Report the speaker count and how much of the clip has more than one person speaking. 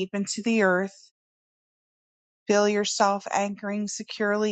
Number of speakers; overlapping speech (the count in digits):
1, no overlap